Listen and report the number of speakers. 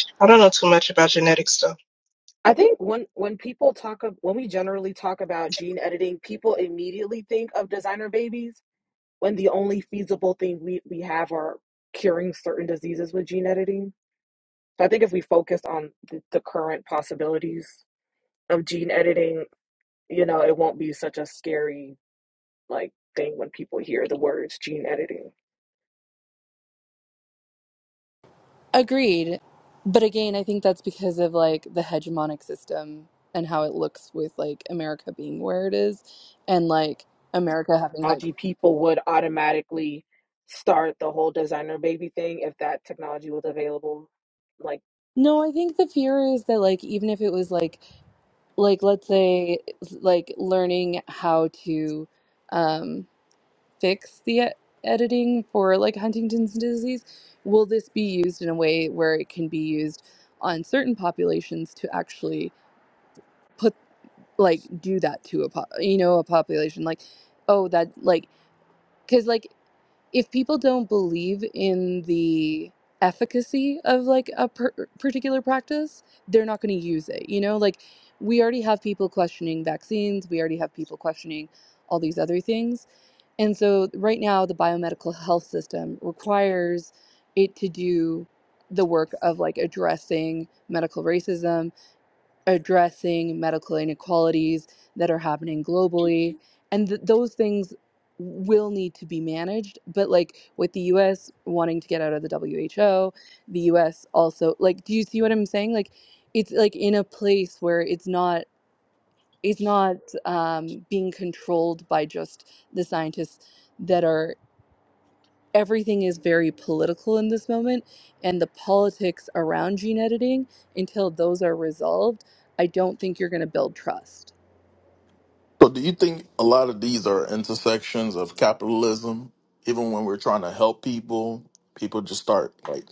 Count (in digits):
4